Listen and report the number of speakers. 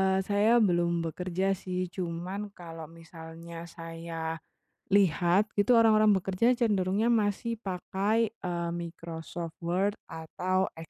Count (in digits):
1